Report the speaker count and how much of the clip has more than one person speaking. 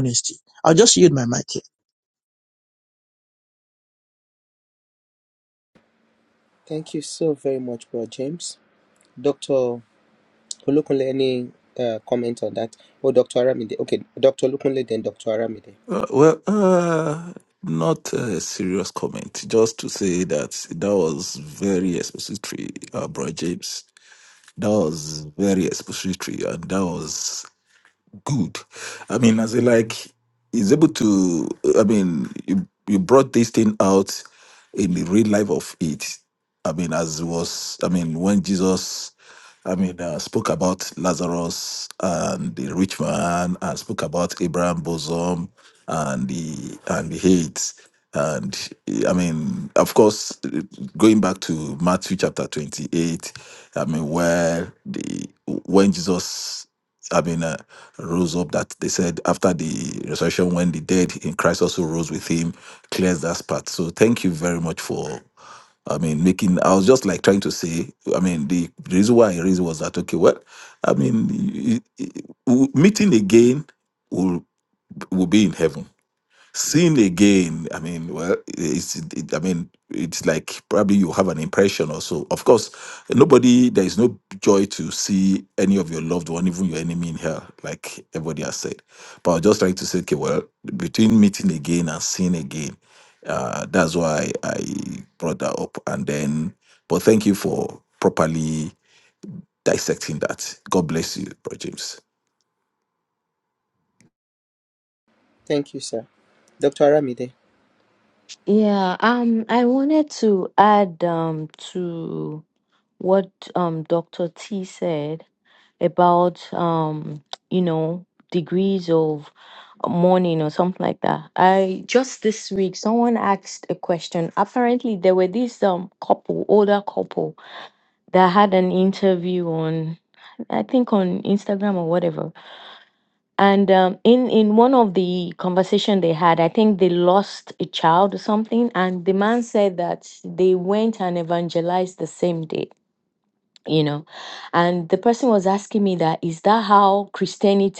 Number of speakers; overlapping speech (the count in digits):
4, no overlap